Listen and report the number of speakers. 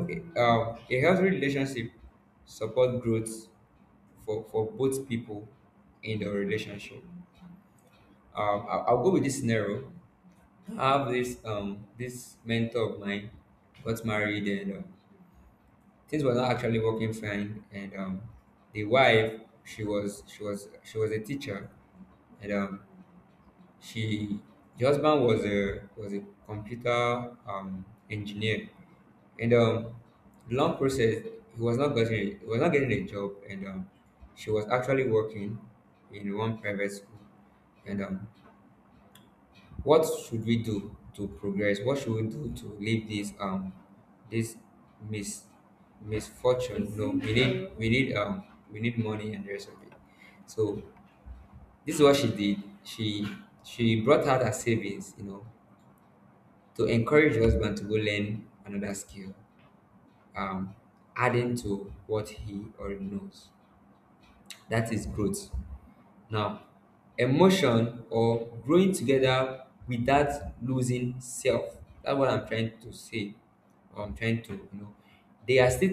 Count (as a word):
one